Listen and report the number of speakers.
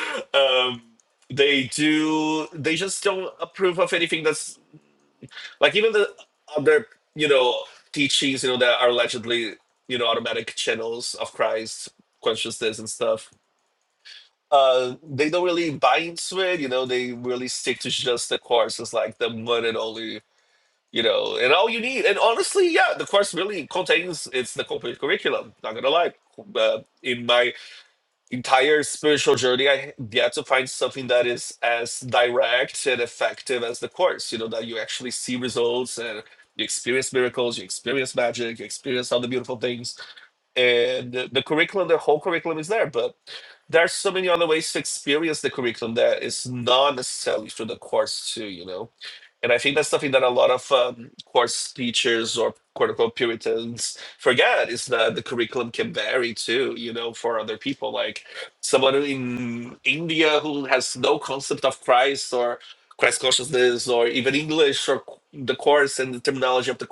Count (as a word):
one